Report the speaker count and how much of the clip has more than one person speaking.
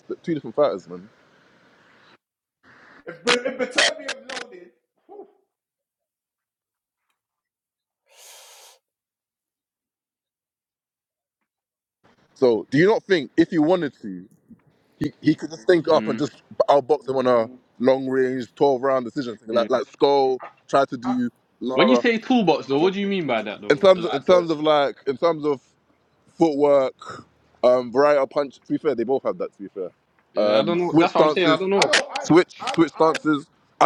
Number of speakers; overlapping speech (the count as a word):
three, about 14%